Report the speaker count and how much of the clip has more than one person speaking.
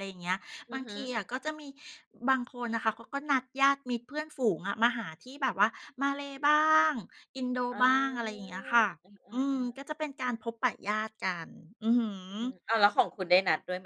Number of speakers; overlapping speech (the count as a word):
two, about 3%